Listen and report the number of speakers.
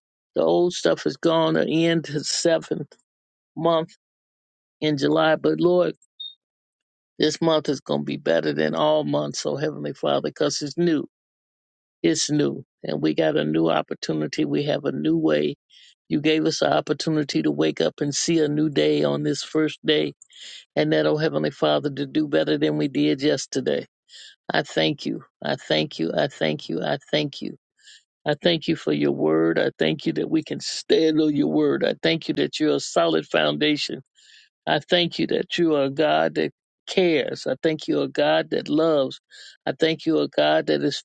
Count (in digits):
1